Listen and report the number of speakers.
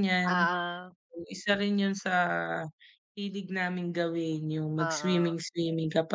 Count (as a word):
two